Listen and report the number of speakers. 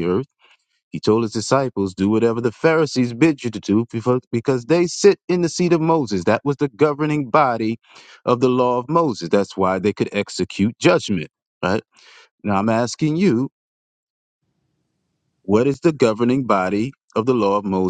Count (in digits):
1